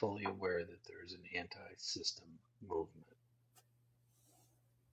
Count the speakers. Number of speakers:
one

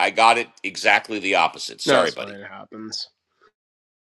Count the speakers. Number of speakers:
two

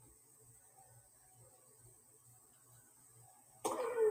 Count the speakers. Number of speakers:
zero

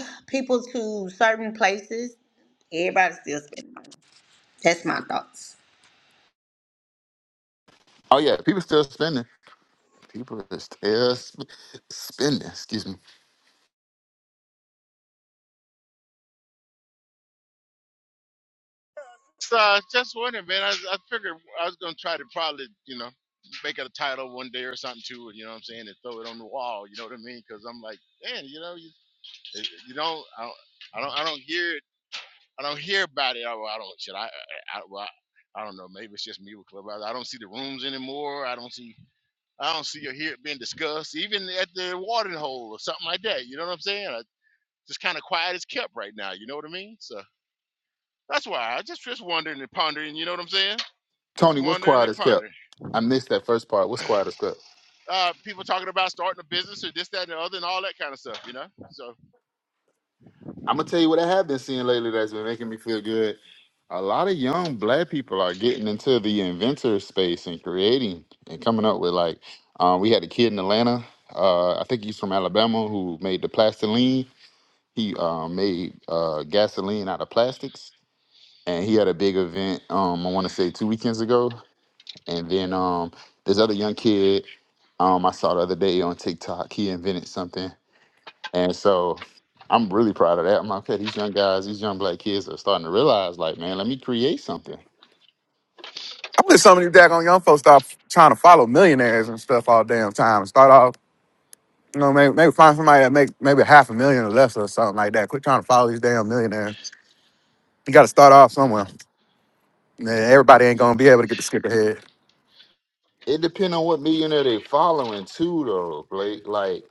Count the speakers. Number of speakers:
four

